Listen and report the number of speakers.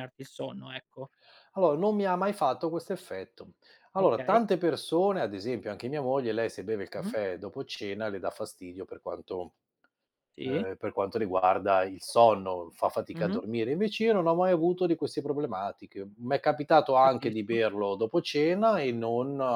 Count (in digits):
2